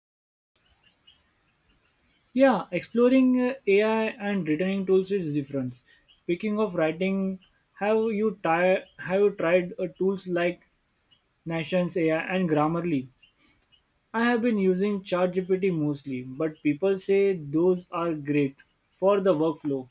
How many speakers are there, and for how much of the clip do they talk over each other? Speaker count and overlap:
1, no overlap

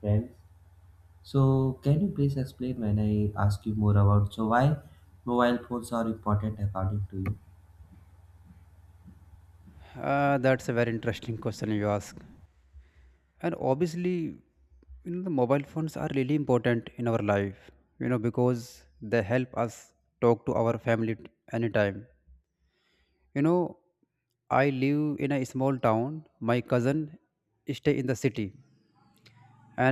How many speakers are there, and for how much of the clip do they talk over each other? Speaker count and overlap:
2, no overlap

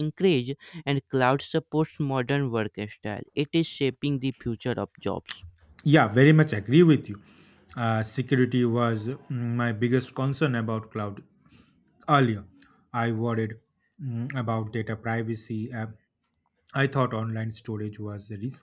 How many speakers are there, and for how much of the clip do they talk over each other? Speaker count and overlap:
2, no overlap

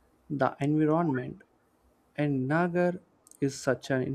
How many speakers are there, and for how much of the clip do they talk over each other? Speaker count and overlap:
1, no overlap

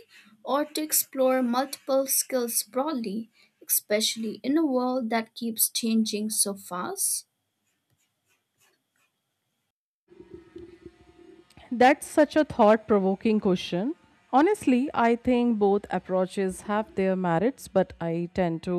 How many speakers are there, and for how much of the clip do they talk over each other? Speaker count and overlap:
2, no overlap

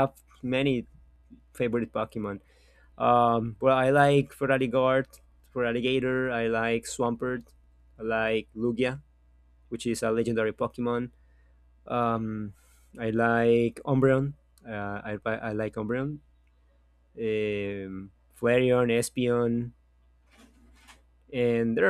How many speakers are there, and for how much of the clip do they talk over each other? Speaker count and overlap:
1, no overlap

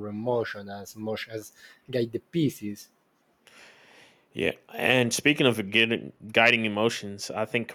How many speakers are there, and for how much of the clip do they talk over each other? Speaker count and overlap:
2, no overlap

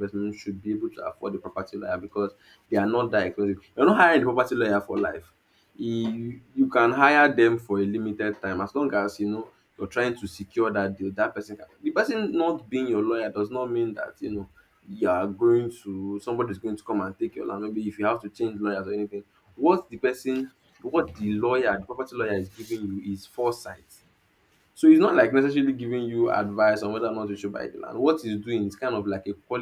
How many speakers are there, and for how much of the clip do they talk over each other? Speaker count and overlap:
1, no overlap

